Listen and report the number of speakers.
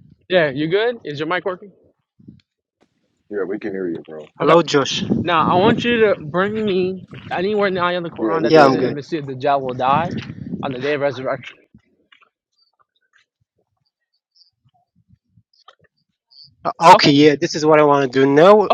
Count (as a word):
three